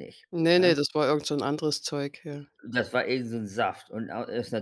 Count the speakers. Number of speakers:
two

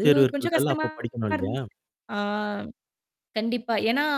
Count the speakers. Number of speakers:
two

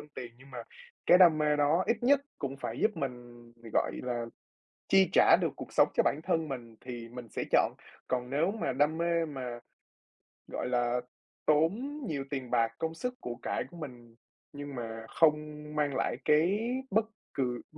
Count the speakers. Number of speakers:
one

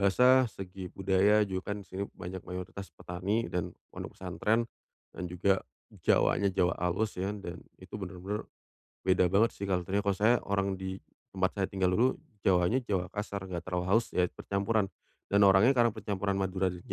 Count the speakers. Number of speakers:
one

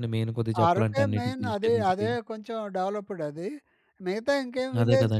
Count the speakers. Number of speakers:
two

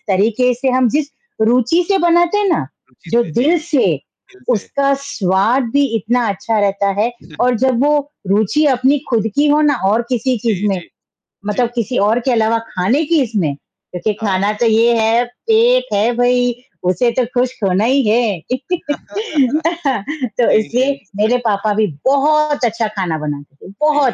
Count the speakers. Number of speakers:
two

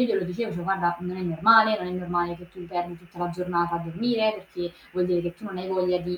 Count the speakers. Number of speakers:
one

